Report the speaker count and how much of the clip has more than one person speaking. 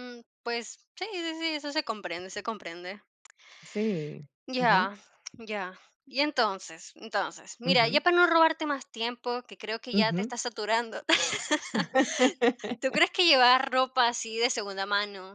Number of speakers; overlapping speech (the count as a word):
two, about 6%